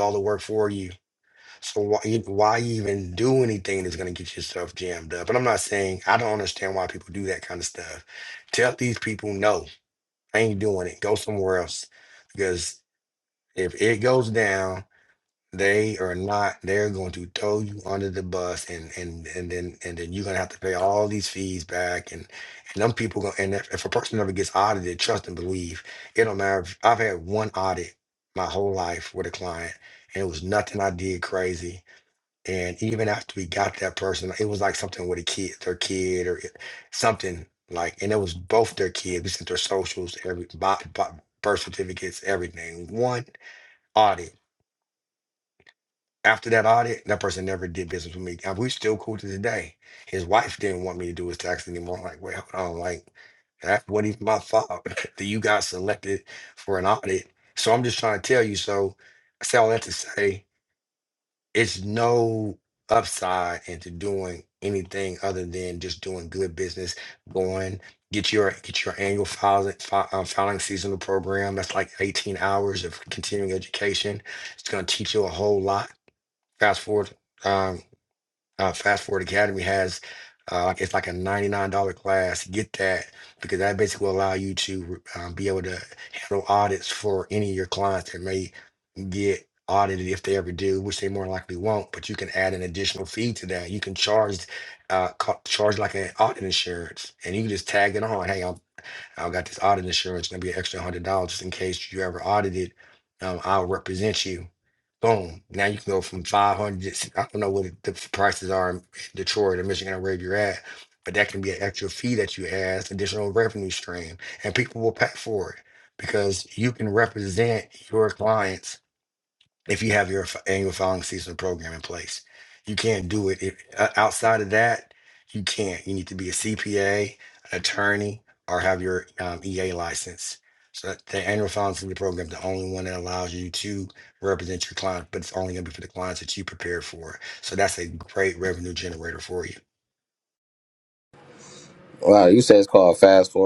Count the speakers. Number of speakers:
two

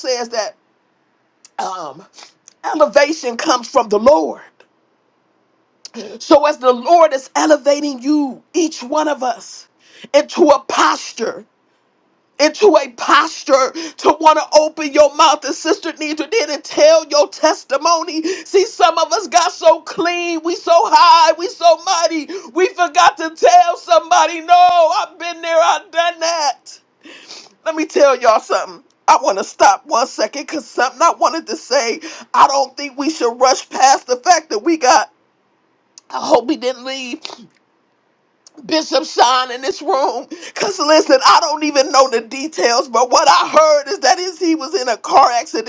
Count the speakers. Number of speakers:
one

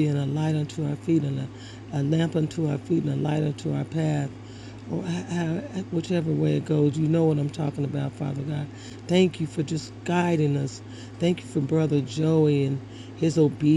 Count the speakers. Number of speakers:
one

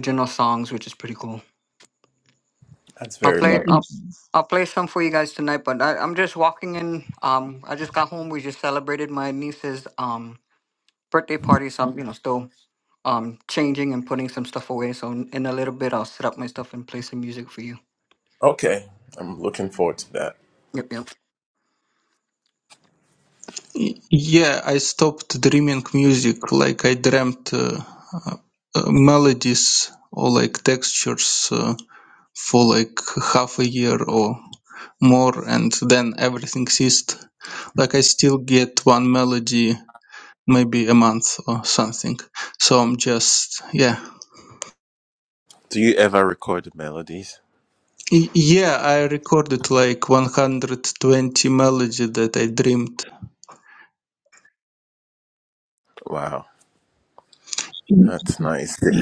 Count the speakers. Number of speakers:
three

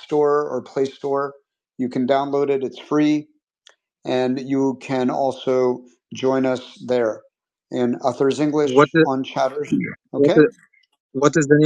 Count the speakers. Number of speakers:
two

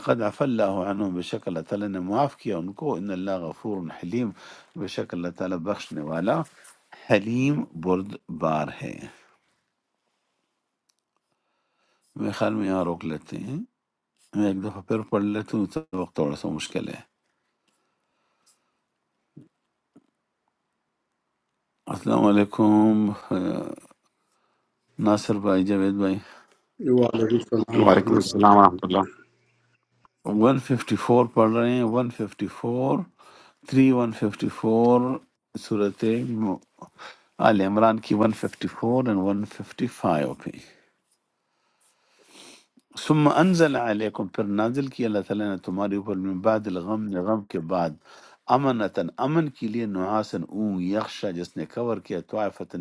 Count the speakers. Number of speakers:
three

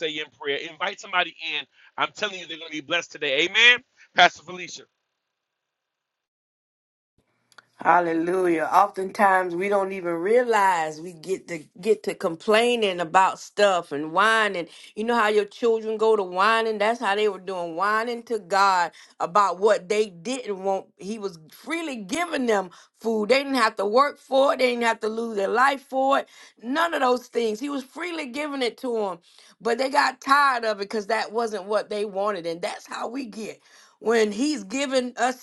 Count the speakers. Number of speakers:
two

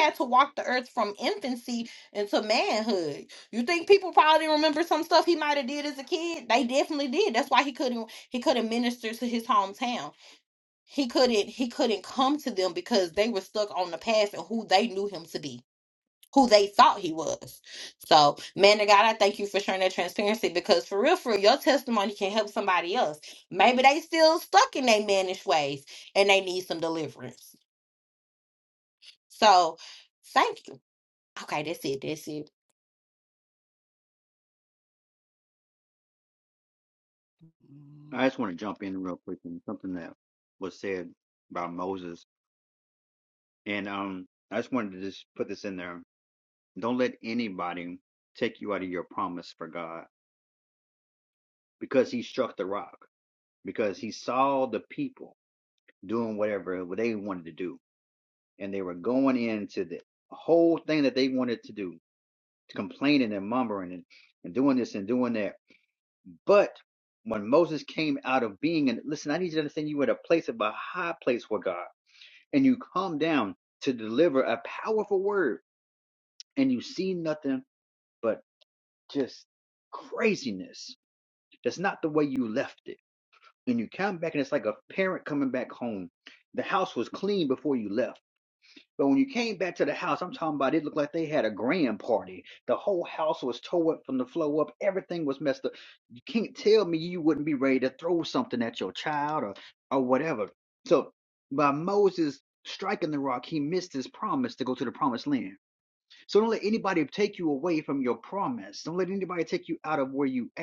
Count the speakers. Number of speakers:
two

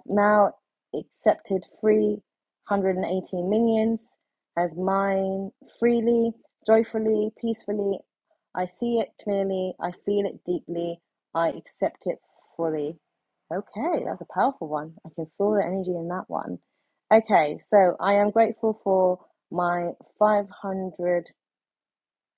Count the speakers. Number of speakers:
one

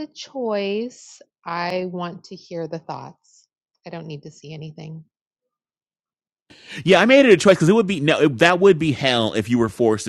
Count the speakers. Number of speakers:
two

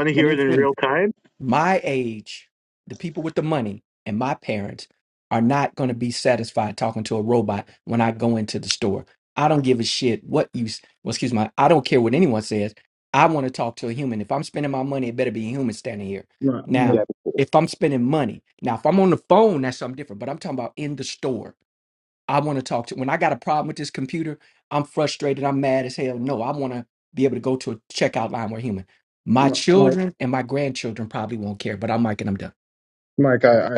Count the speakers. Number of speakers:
three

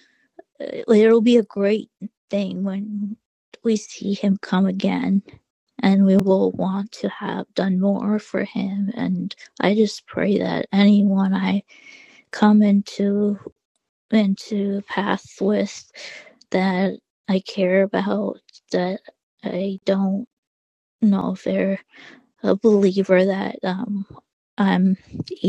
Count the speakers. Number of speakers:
one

